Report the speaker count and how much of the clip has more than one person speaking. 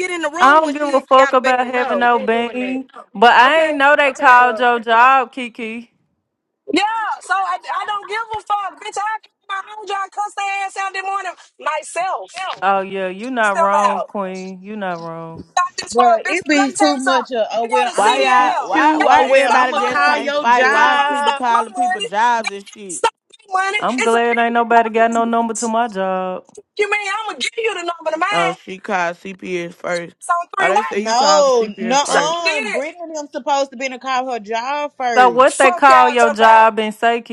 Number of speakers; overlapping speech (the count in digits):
5, about 43%